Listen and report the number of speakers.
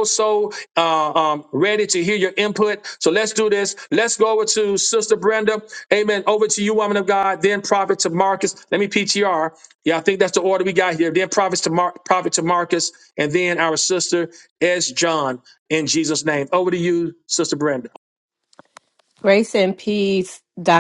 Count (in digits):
2